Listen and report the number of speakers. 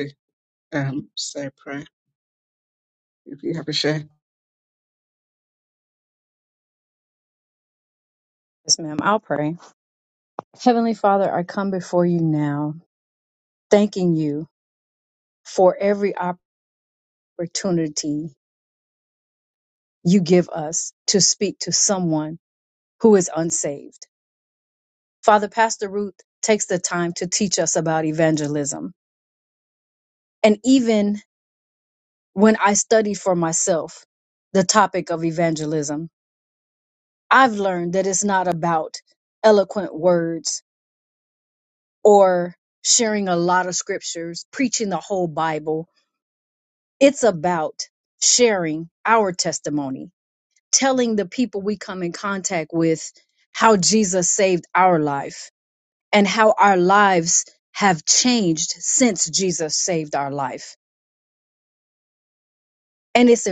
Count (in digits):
2